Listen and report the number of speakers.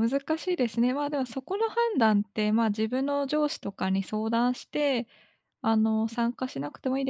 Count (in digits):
1